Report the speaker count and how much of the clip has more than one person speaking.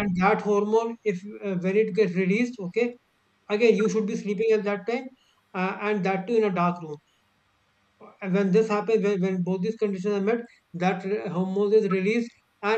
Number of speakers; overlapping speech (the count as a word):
one, no overlap